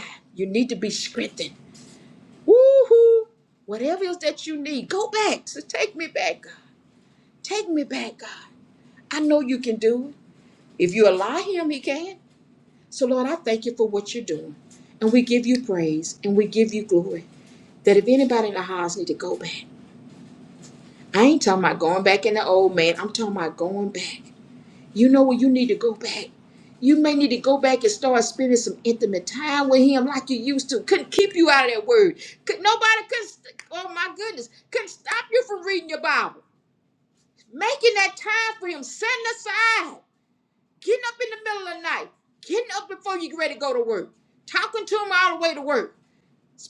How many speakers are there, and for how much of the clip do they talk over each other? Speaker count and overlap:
1, no overlap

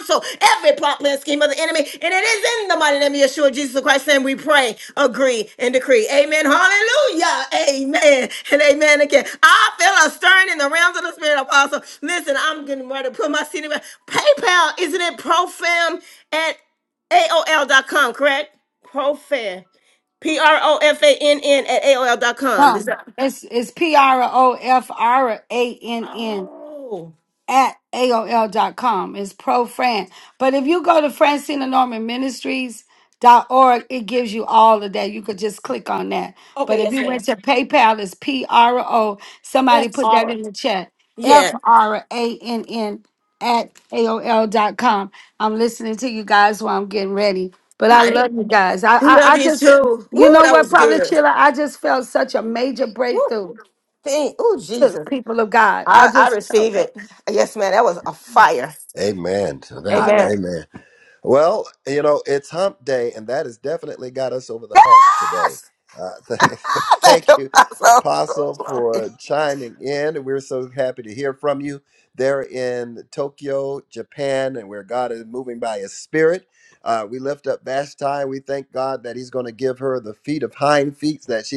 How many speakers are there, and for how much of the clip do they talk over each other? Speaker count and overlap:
3, about 10%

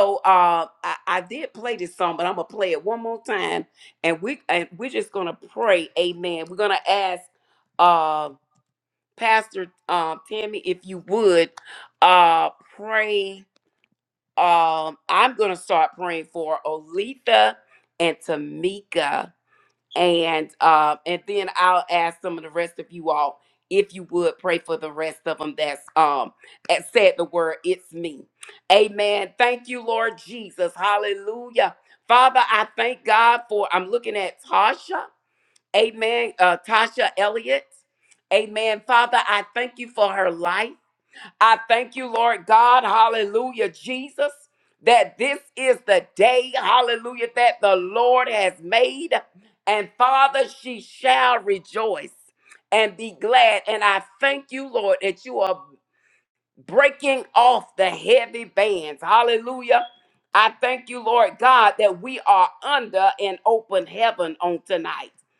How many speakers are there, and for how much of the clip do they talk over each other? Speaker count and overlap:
1, no overlap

